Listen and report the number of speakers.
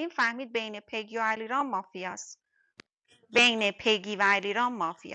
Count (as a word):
one